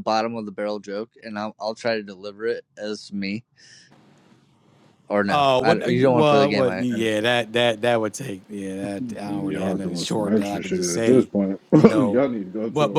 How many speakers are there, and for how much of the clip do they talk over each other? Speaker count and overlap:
three, about 35%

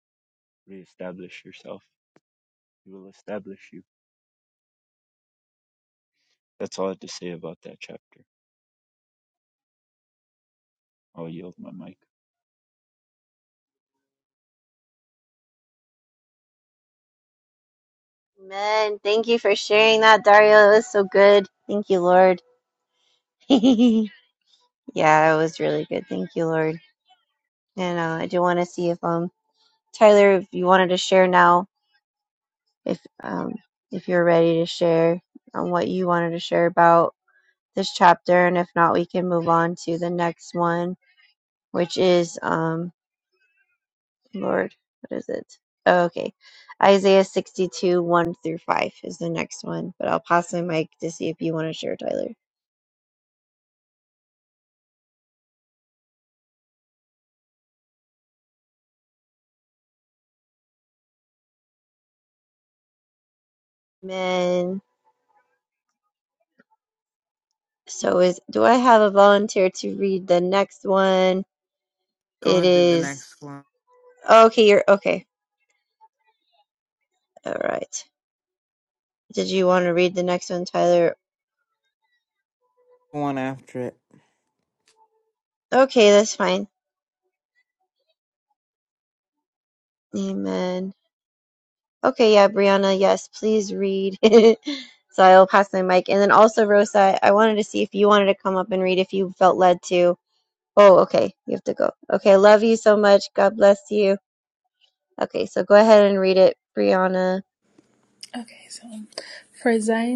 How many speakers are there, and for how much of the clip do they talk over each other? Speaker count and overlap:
four, about 1%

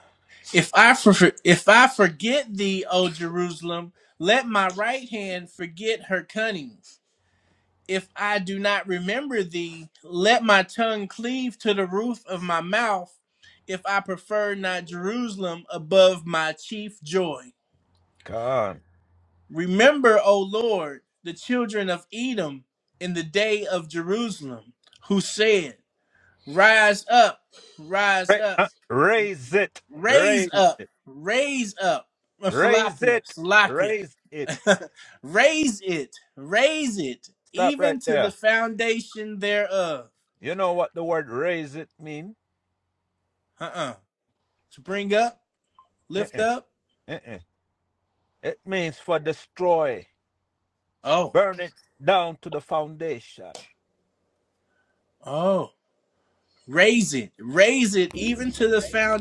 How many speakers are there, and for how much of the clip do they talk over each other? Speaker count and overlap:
two, about 6%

